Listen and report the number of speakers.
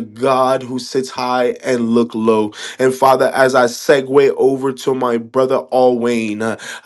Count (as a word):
one